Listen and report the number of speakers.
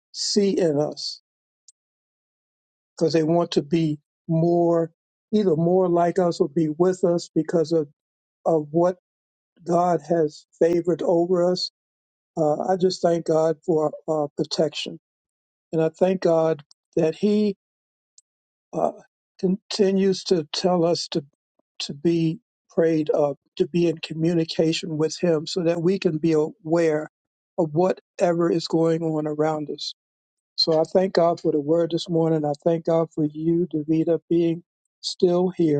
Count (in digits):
1